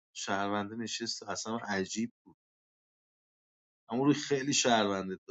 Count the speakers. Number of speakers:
1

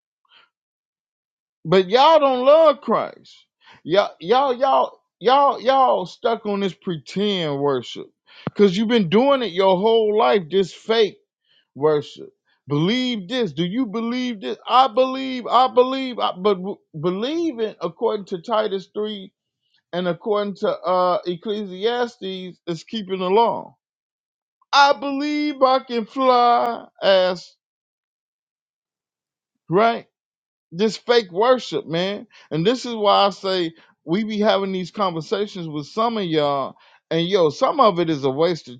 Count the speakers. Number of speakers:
1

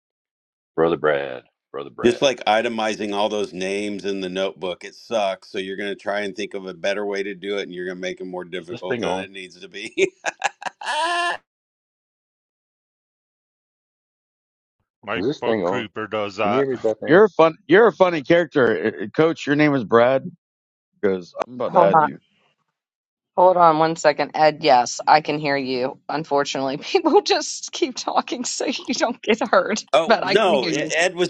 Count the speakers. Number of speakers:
5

